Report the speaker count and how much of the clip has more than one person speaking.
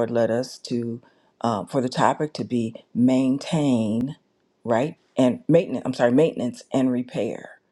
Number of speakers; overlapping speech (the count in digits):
1, no overlap